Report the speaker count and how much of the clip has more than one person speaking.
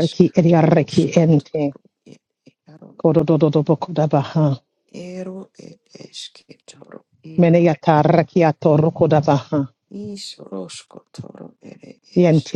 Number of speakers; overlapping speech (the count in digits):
2, about 17%